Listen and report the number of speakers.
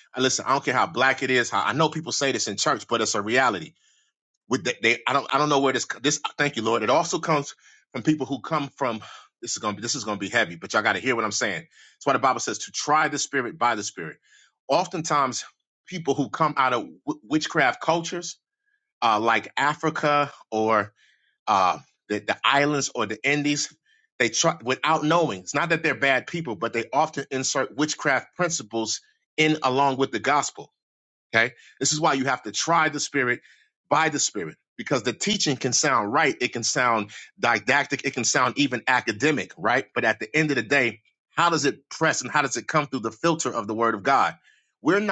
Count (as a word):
one